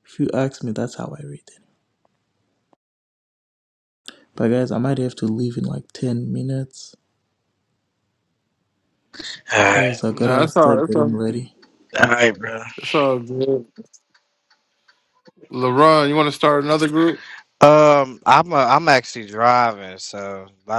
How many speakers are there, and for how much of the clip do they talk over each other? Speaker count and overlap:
three, about 6%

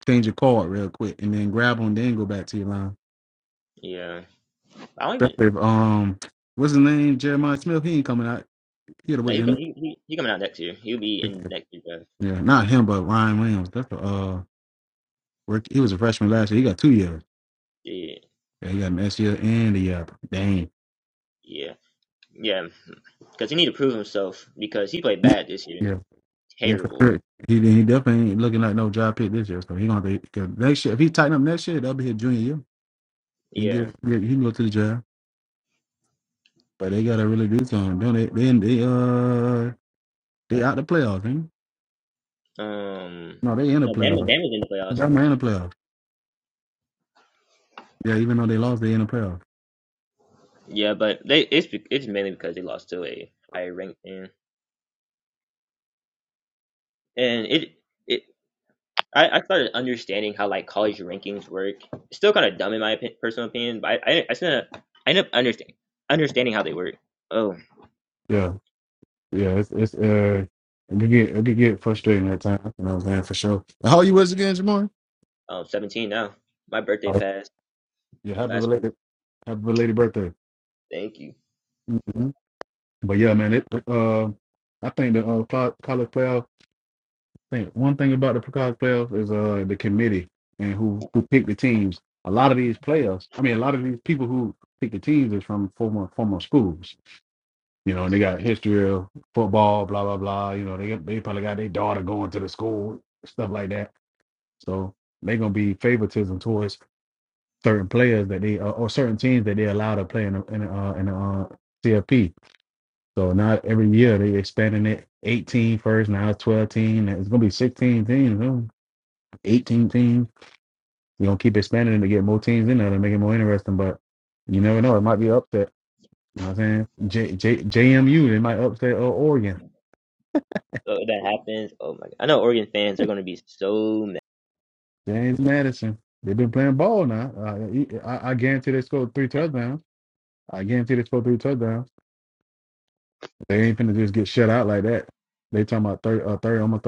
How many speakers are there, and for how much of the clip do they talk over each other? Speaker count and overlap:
two, about 2%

